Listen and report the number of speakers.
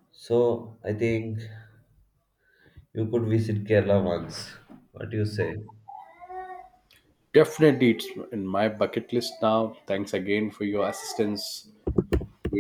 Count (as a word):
two